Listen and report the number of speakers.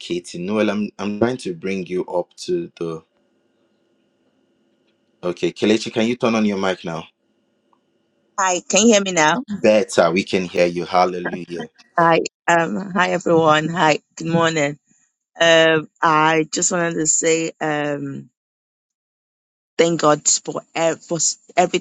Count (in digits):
2